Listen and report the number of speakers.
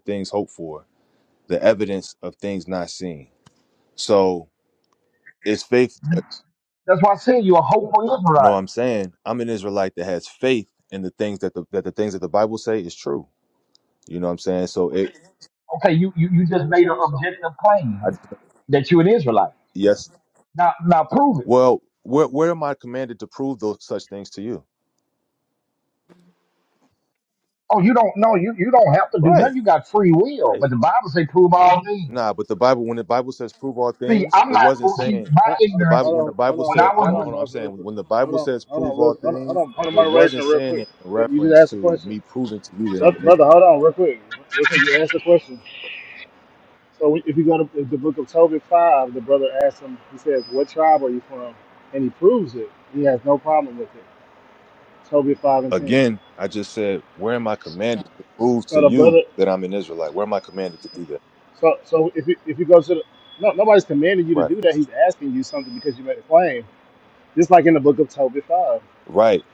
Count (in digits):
3